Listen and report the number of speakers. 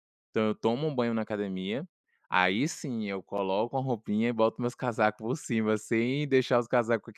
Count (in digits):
1